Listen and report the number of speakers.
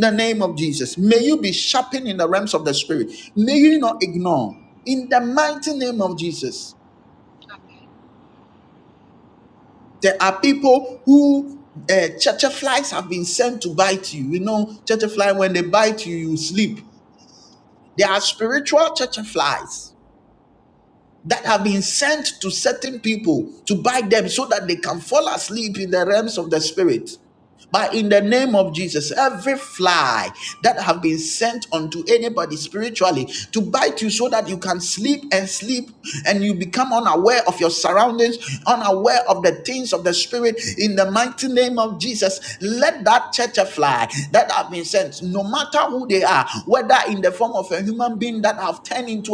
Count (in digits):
1